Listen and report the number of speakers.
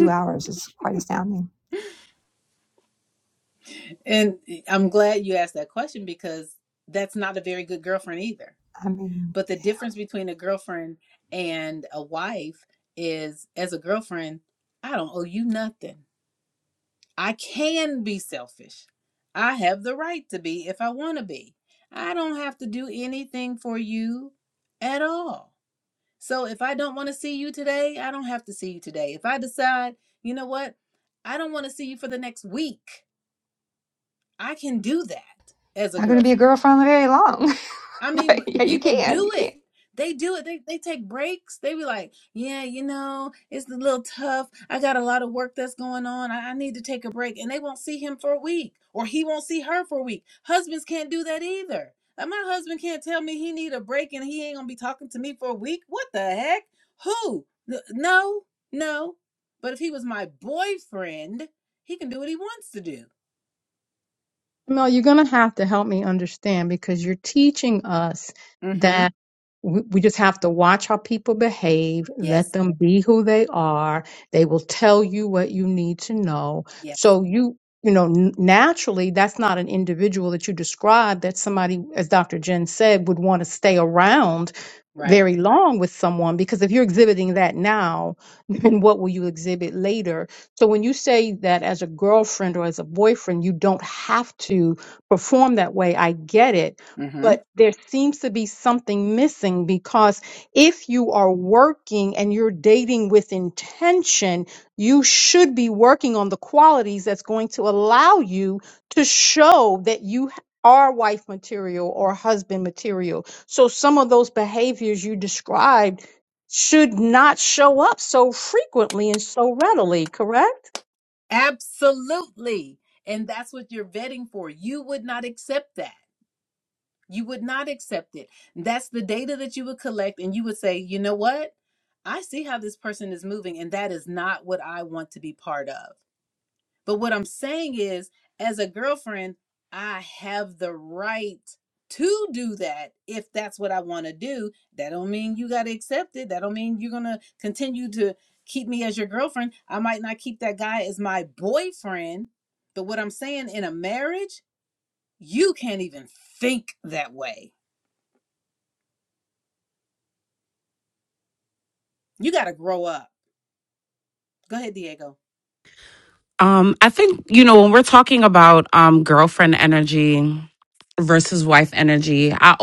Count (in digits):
4